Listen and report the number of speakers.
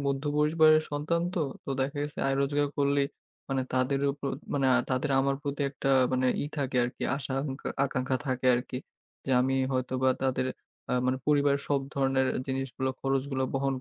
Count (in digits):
1